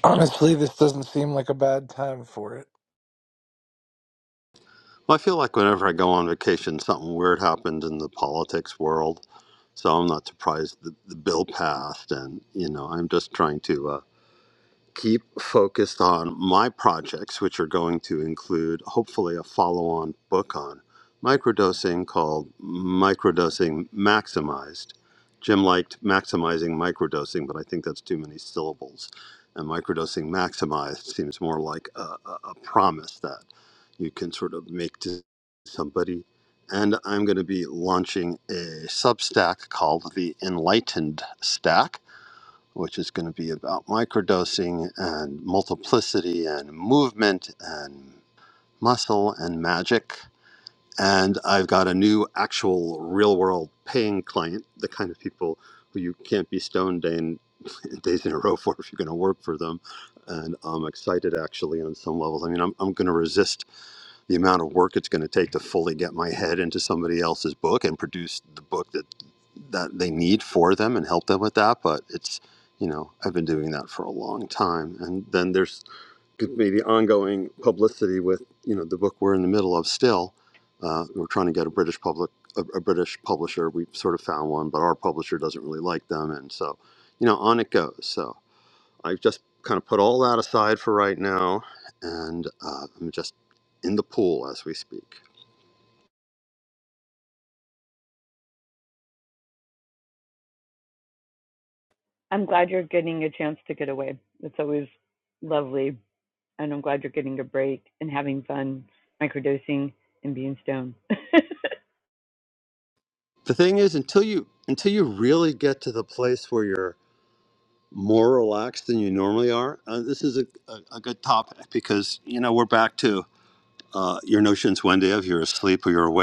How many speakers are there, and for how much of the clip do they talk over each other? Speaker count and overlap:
3, no overlap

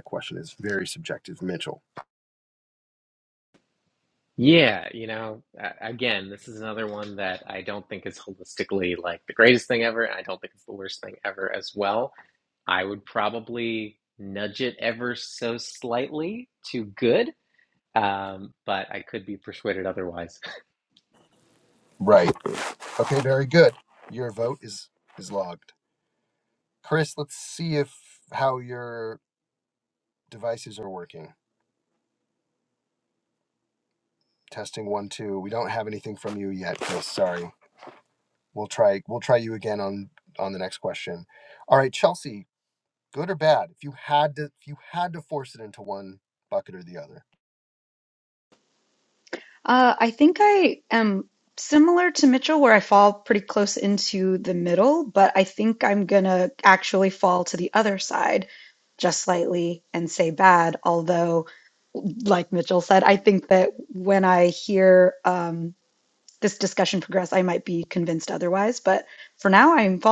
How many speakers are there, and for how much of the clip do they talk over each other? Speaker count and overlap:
3, no overlap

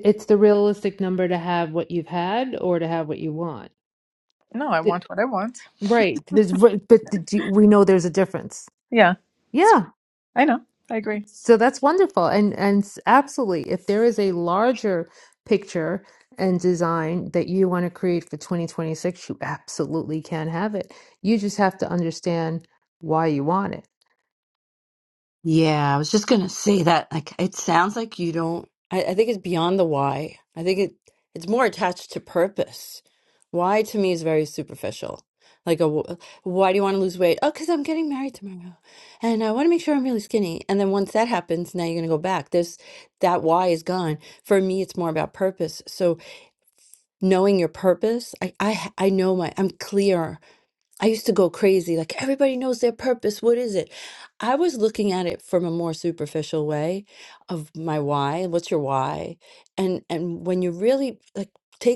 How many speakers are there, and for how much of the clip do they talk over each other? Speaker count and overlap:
3, under 1%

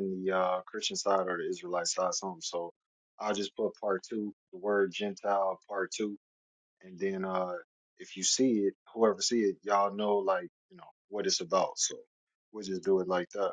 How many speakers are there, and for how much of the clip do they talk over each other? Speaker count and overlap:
1, no overlap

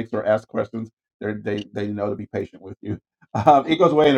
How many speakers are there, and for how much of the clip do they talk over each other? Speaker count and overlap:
1, no overlap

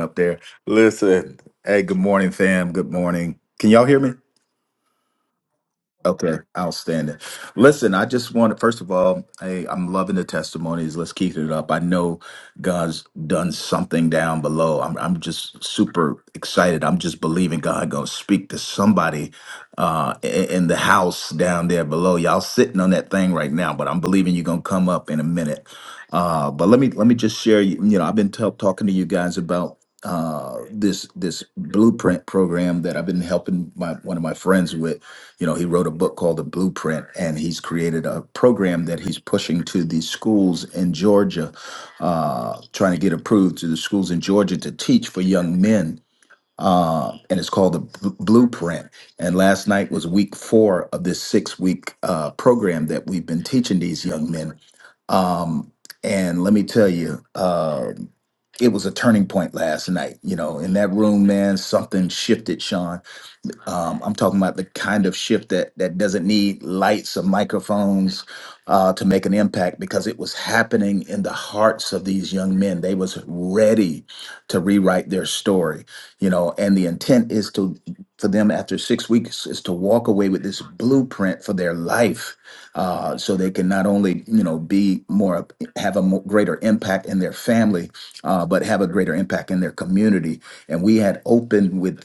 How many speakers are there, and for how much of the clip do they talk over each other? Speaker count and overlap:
1, no overlap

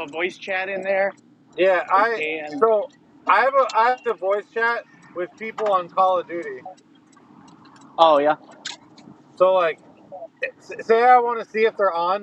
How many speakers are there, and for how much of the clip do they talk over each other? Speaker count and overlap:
2, about 1%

